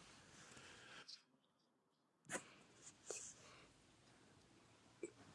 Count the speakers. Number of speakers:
0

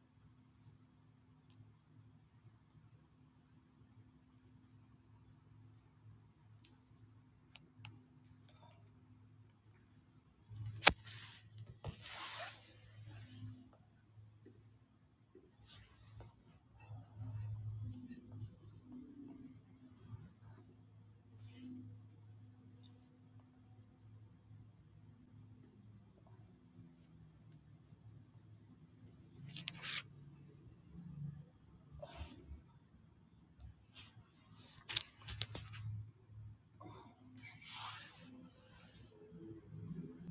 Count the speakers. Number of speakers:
0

